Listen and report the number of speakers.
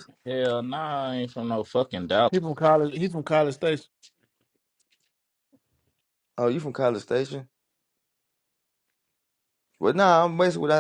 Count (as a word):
three